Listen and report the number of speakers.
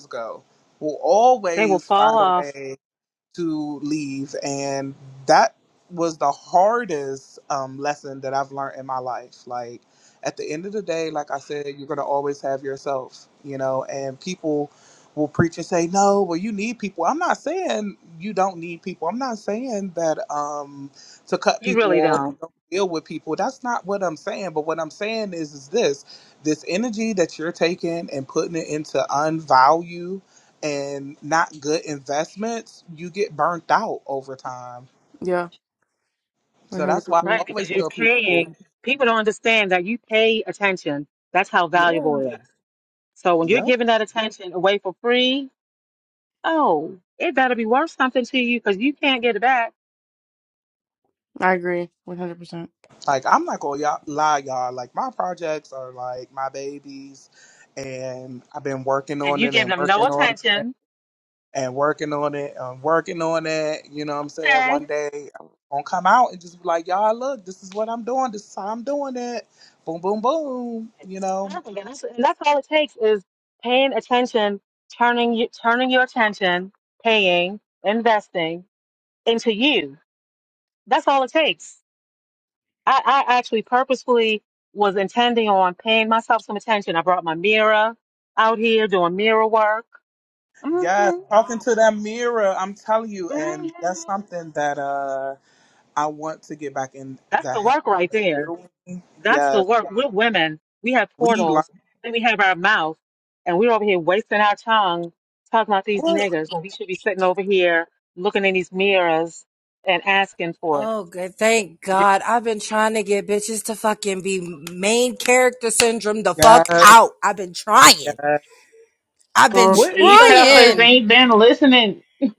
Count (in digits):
5